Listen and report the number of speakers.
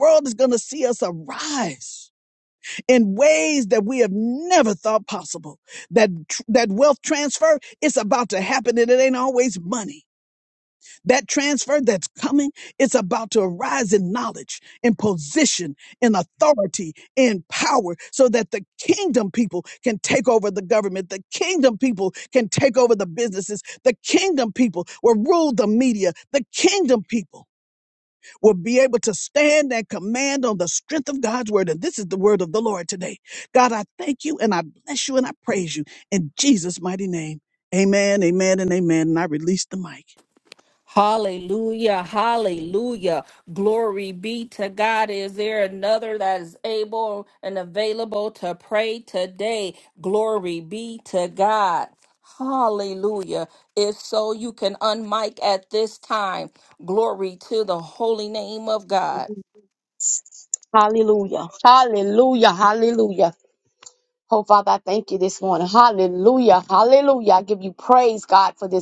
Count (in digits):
3